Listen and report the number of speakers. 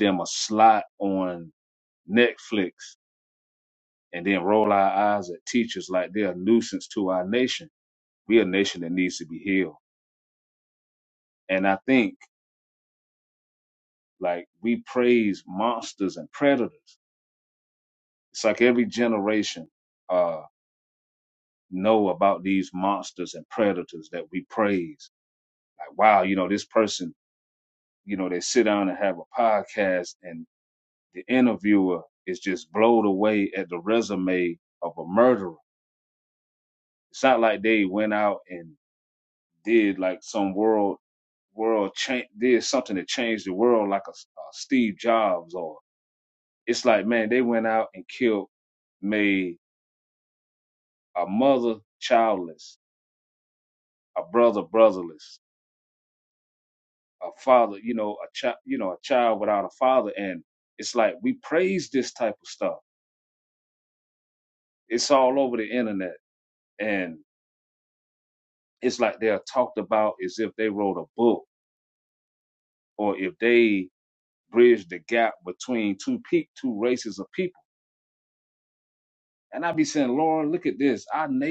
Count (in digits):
1